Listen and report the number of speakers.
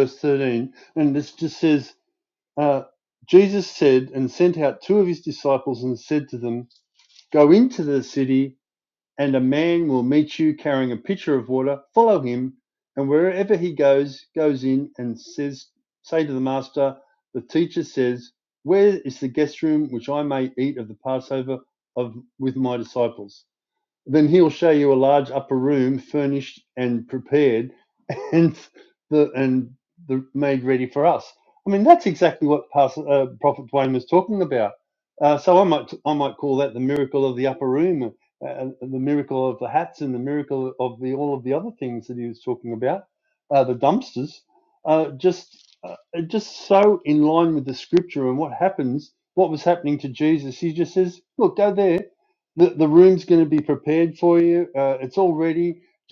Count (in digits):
1